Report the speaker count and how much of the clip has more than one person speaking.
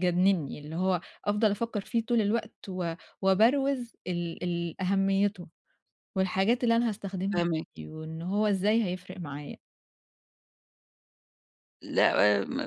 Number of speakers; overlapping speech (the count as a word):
two, about 1%